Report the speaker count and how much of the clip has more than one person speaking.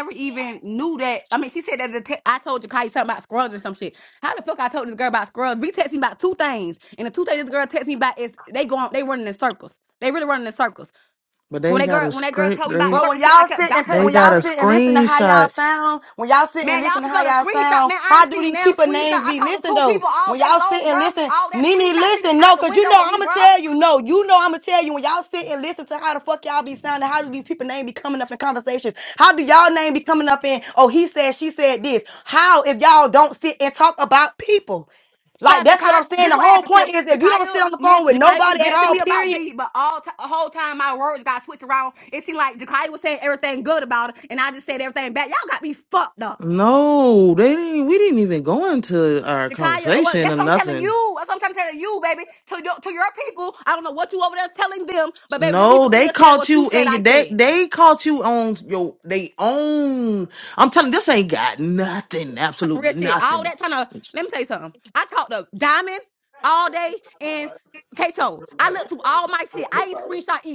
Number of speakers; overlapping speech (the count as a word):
three, about 26%